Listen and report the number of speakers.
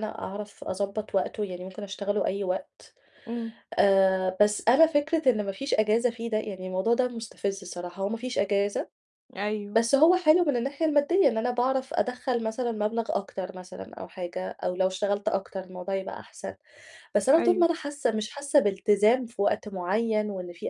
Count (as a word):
two